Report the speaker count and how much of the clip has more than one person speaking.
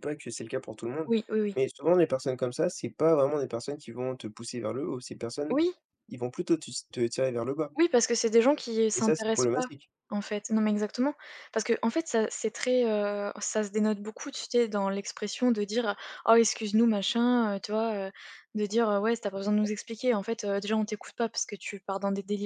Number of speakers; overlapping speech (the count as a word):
two, about 4%